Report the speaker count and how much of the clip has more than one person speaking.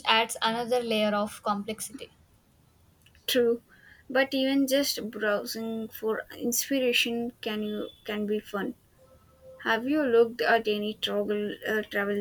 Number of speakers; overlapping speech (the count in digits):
2, no overlap